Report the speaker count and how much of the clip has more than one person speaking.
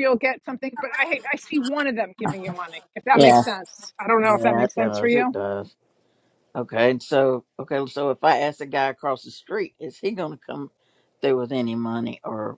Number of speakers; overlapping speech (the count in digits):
2, about 11%